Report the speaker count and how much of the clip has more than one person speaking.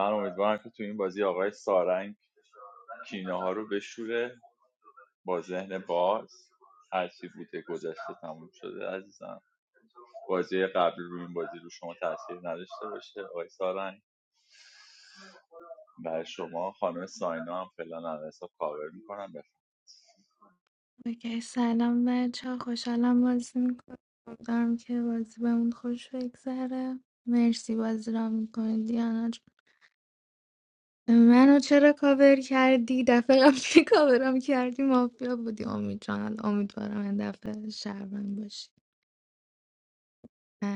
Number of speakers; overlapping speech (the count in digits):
2, no overlap